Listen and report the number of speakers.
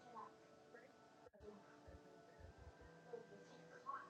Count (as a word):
zero